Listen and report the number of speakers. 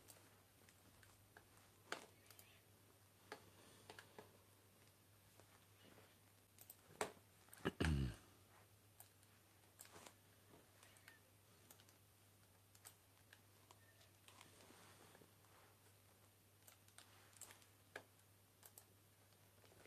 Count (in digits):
0